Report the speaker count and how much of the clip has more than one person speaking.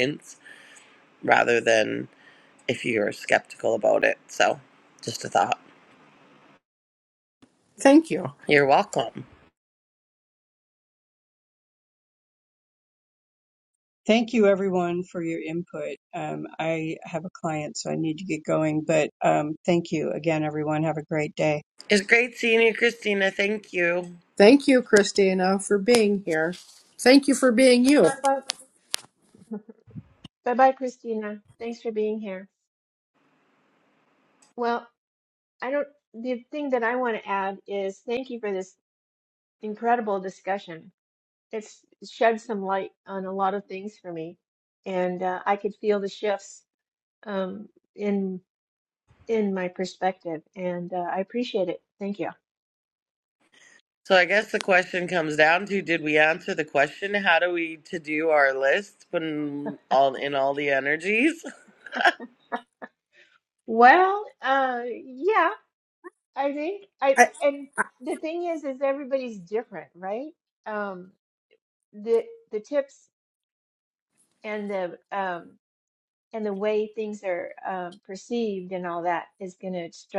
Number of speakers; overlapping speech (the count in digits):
4, under 1%